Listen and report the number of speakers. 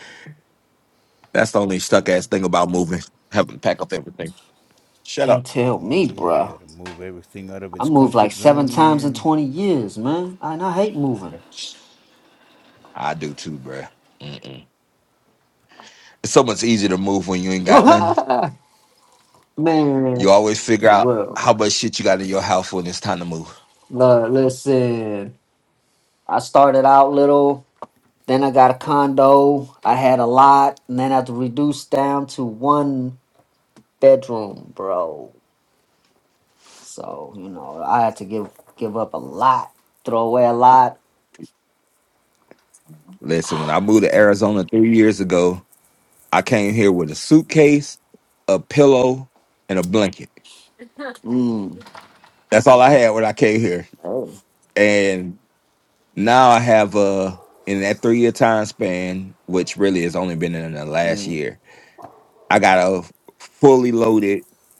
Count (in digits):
3